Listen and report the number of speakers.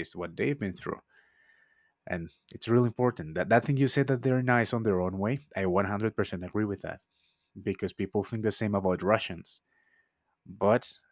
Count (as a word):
one